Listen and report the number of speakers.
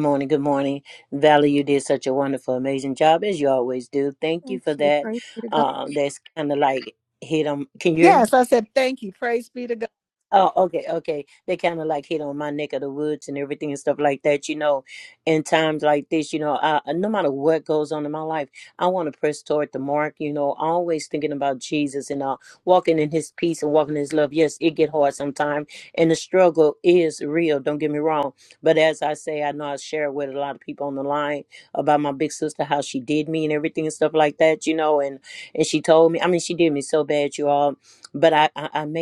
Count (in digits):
2